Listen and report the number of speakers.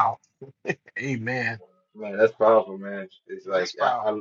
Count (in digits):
2